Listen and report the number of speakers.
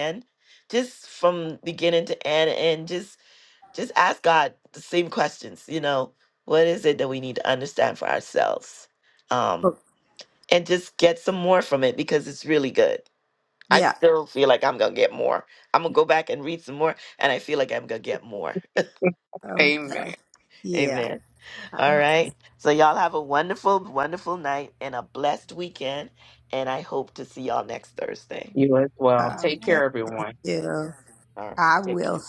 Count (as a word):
three